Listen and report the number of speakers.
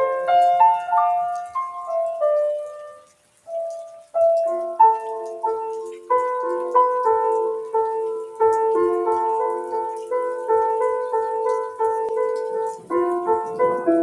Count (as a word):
zero